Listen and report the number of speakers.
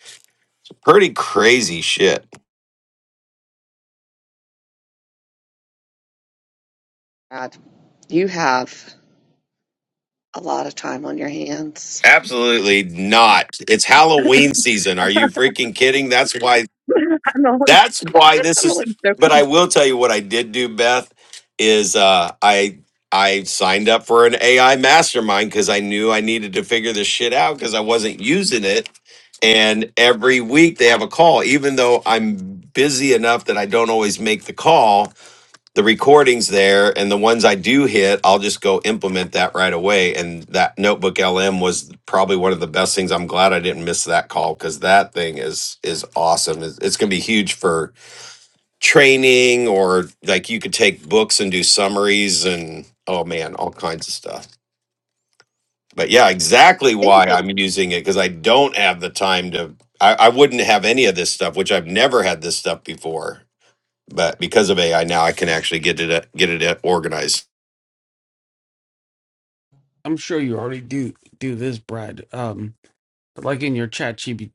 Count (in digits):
3